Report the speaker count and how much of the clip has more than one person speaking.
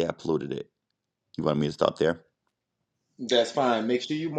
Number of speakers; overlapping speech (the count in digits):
2, no overlap